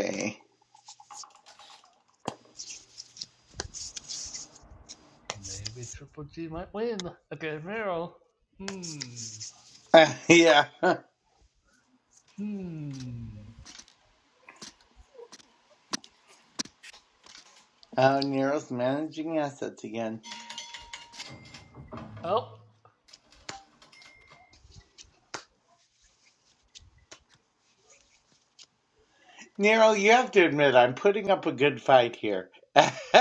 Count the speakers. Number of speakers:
two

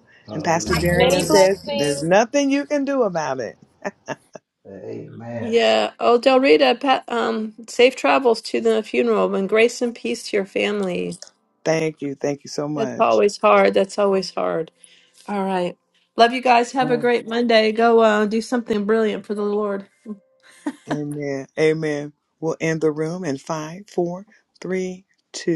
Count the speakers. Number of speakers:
three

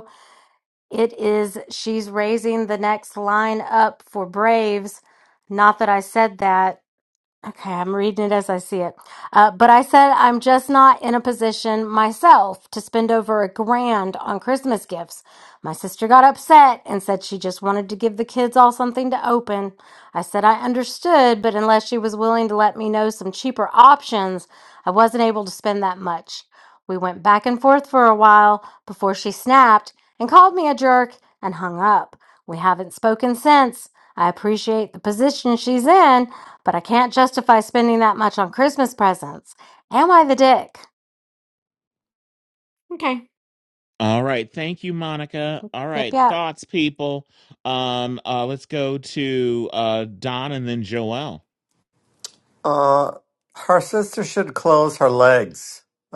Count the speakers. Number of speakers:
three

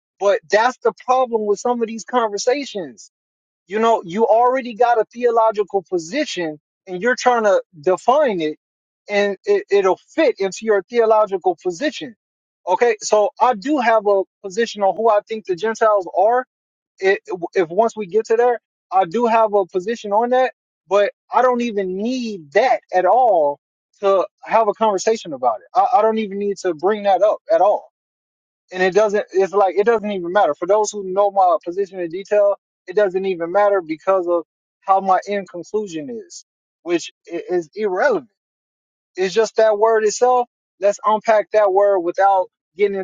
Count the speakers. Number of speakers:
one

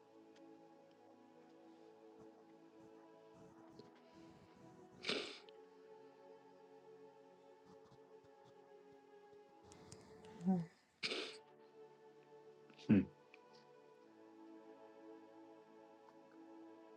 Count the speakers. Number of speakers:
zero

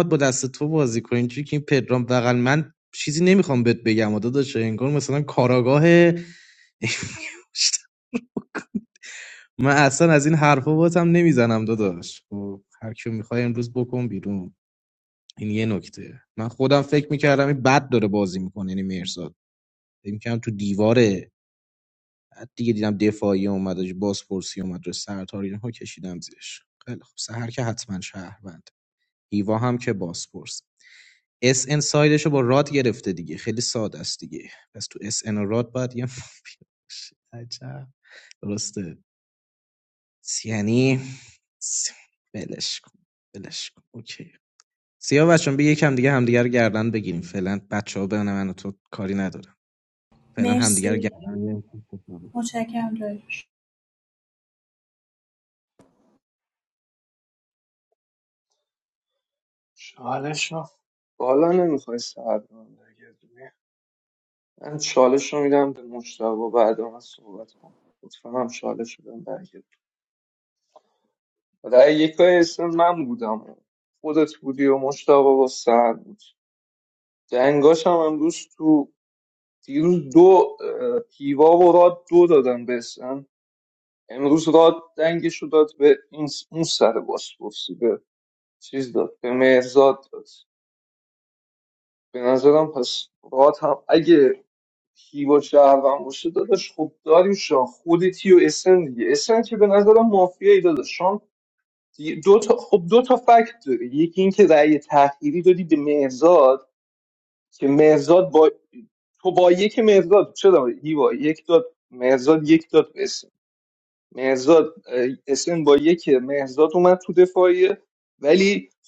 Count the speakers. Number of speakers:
three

